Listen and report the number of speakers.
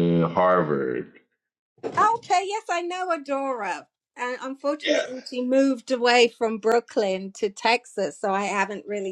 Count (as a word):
two